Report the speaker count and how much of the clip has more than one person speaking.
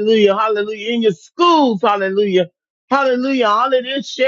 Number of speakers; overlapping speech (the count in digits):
1, no overlap